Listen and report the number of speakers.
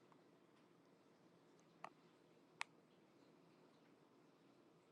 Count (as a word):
zero